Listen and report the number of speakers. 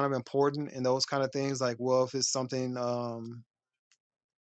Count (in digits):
1